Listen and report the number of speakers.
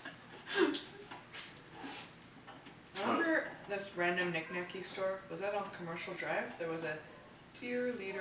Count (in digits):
1